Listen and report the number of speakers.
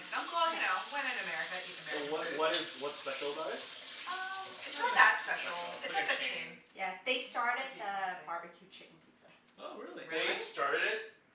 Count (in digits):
4